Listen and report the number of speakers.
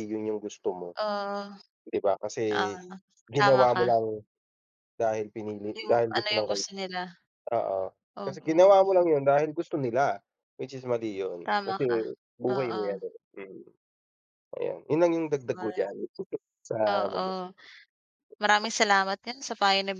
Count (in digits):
2